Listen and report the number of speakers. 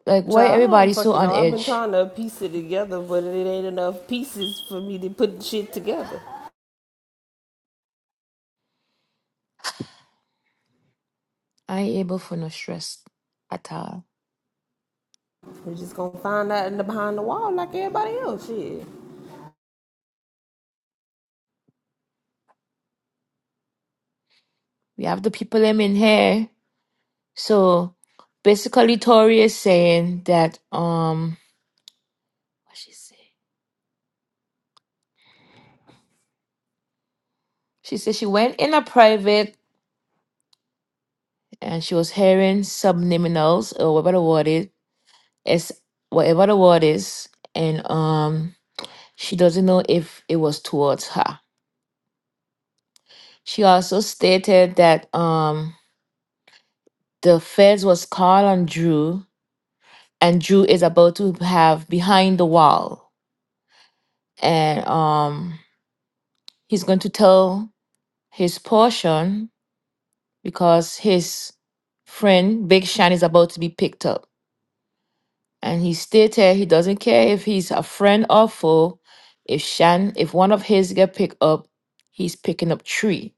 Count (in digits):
2